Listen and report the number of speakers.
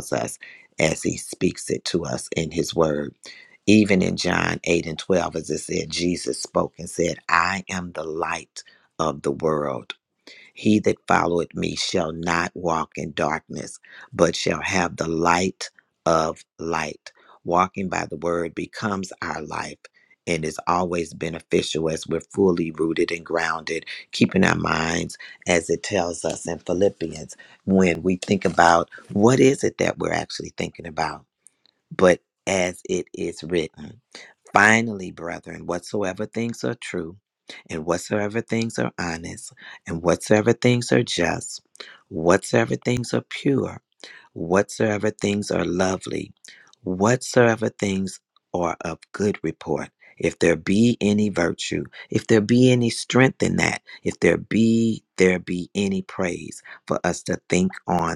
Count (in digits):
1